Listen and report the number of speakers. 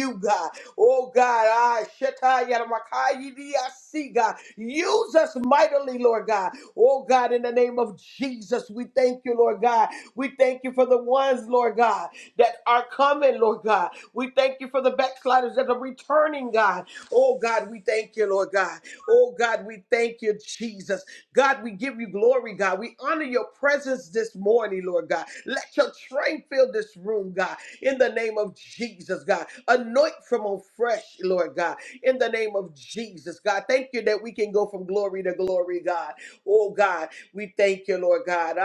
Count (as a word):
one